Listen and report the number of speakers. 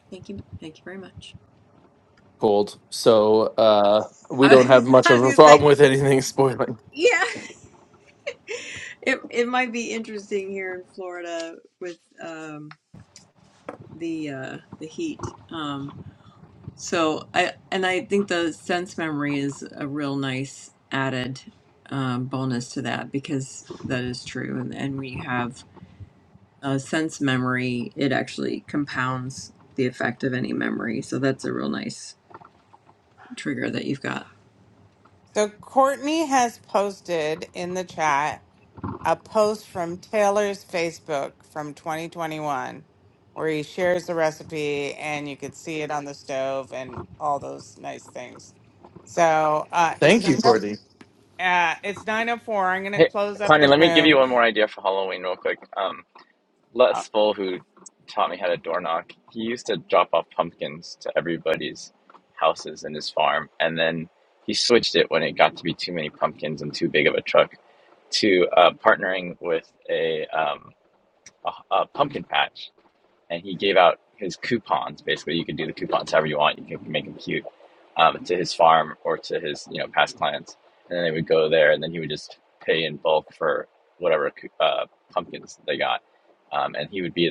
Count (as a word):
four